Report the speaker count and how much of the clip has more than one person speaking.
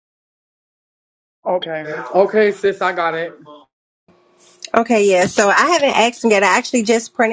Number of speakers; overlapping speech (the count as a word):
two, no overlap